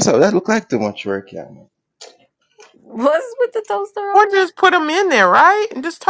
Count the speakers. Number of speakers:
three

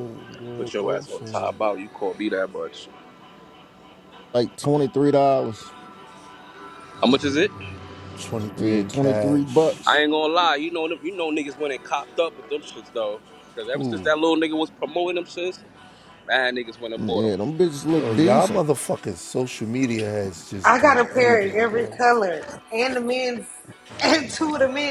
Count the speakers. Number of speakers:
four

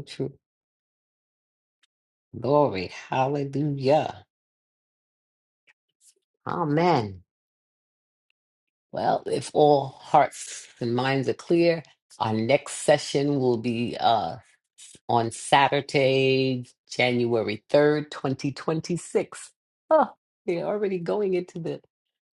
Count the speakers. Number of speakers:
one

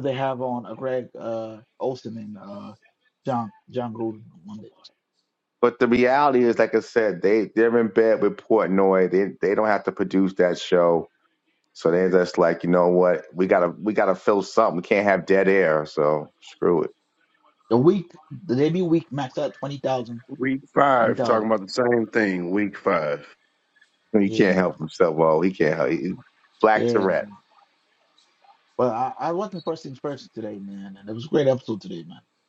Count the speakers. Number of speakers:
three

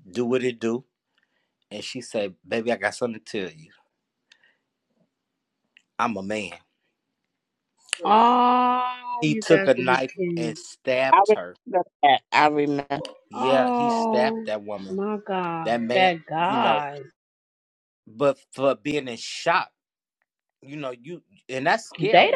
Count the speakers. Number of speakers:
three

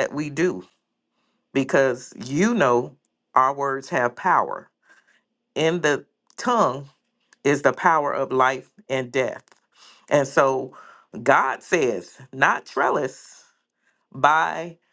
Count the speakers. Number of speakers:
one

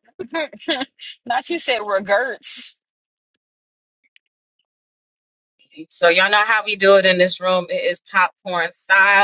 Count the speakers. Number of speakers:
two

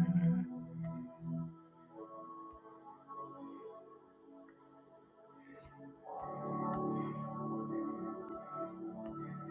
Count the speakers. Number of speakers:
zero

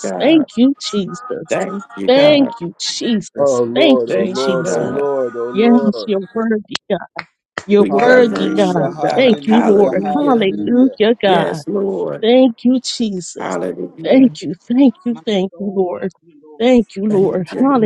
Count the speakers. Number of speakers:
three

